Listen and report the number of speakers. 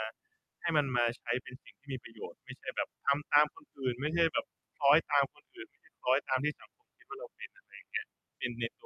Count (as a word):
one